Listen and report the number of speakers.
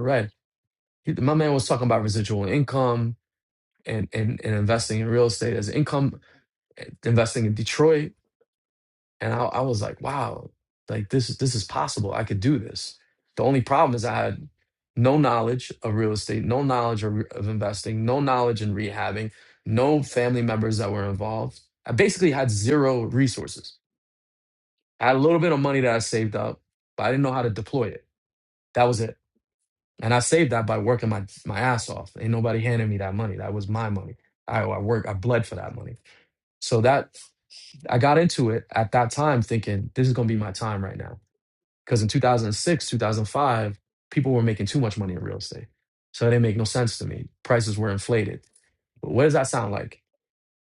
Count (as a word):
one